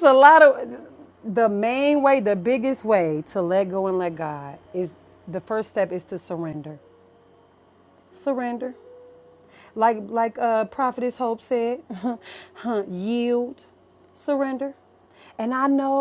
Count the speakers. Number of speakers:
one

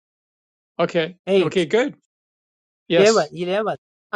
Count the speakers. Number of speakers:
two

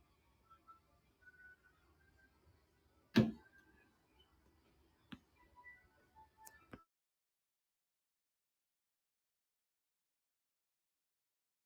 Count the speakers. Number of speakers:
zero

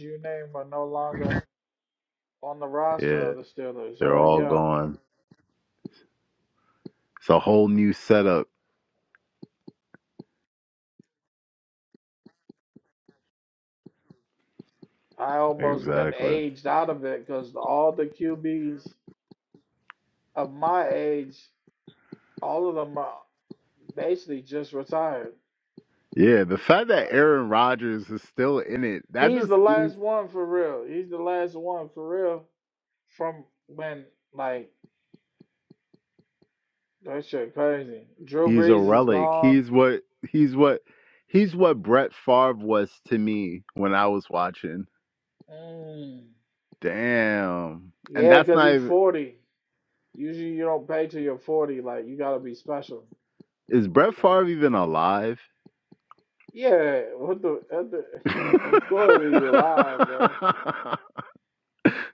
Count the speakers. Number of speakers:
two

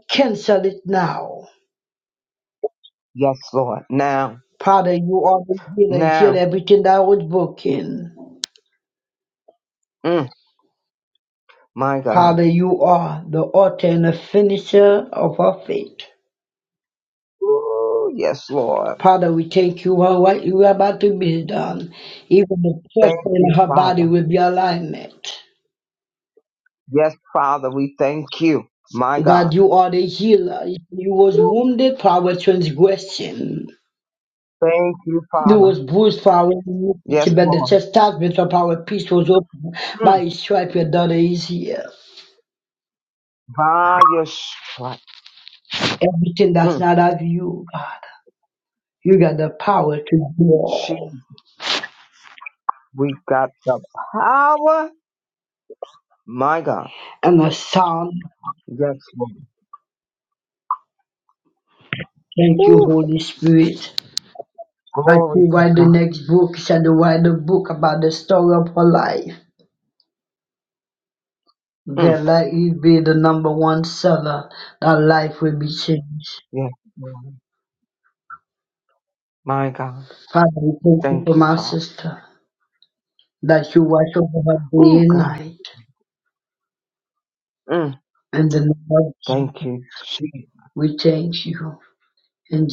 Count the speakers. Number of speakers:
two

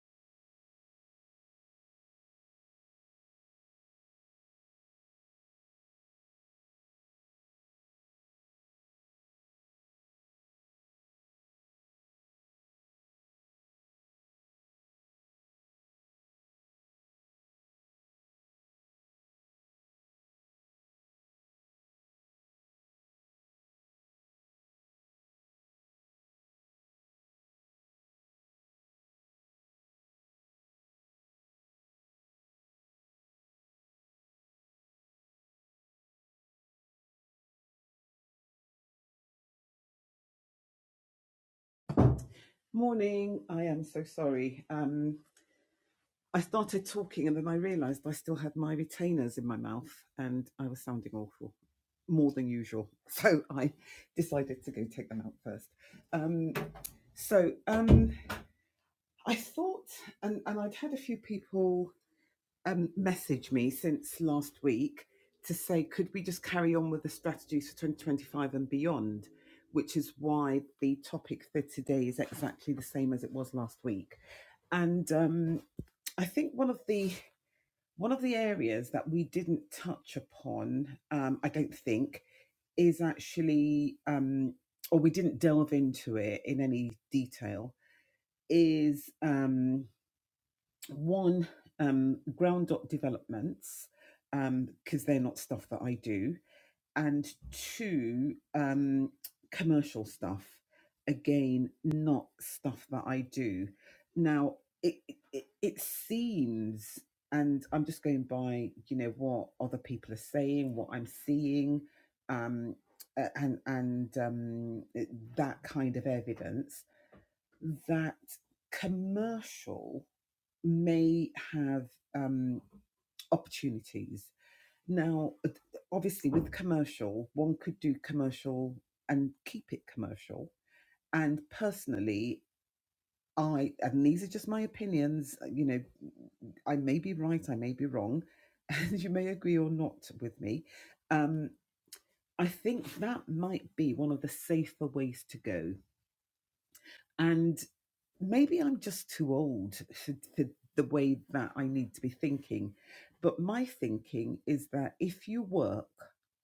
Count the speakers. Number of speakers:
one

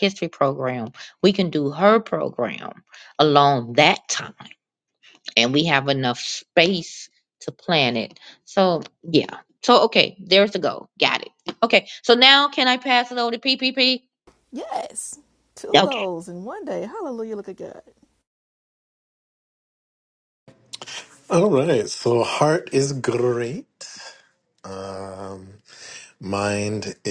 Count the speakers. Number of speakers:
three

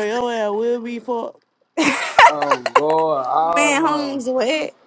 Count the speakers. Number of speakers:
three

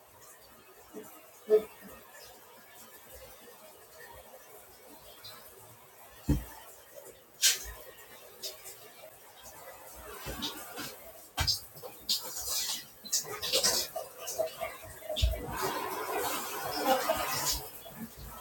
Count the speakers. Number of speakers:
zero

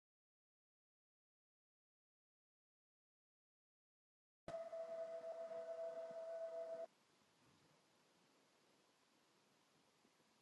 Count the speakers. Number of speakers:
zero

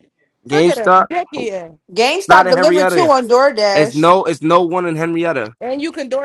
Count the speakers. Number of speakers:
three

